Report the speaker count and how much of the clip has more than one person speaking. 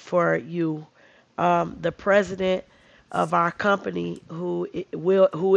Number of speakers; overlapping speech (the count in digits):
1, no overlap